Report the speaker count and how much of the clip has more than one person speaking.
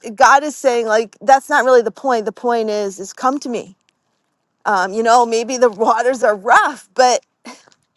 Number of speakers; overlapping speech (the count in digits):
1, no overlap